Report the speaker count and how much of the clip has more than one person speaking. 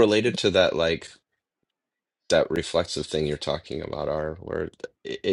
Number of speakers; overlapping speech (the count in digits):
1, no overlap